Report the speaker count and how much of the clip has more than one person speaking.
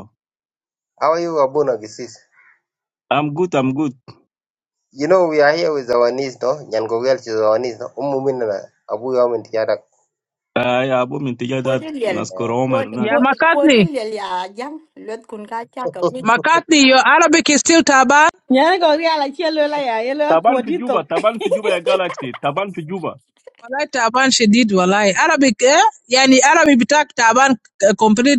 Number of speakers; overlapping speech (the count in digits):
5, about 6%